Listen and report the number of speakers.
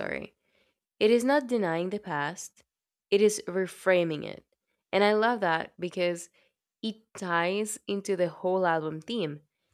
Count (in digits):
1